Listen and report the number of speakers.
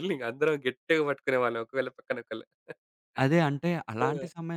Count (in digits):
2